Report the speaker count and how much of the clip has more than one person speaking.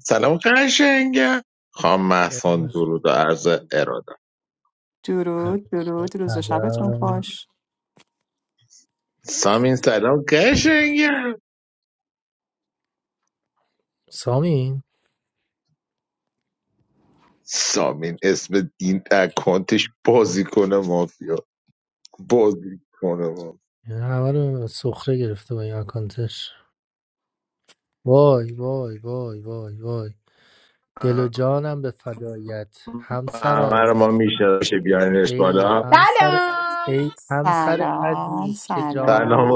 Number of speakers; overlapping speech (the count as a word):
four, about 12%